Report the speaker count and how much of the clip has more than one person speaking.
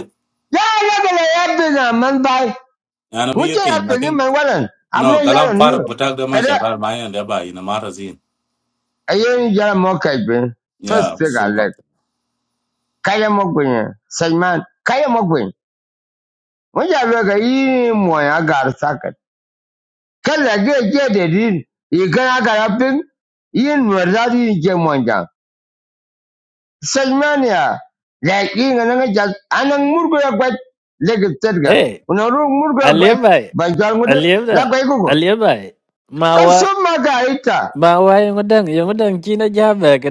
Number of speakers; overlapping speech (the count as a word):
three, about 10%